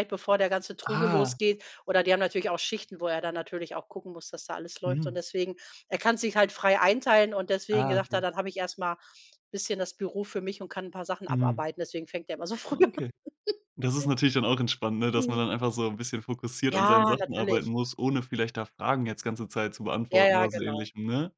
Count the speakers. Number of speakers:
2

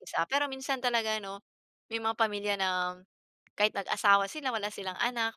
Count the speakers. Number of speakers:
1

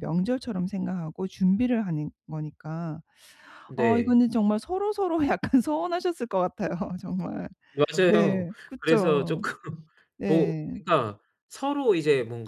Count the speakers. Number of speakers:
2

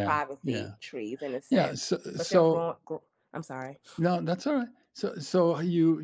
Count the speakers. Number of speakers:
2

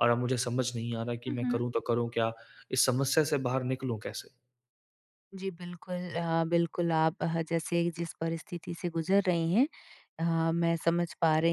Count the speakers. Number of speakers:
2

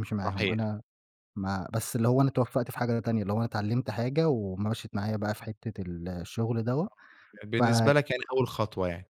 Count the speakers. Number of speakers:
2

